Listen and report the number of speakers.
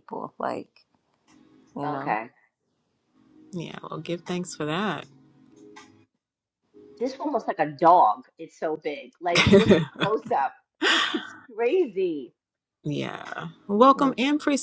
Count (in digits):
3